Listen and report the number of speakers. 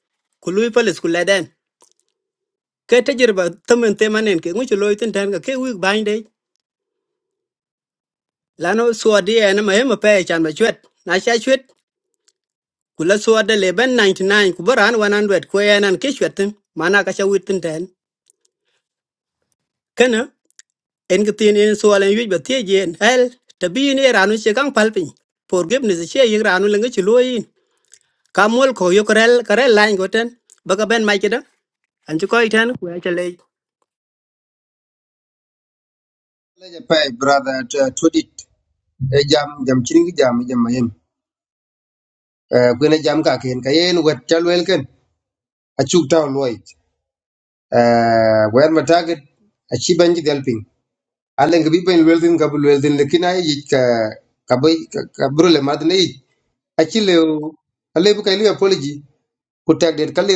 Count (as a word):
two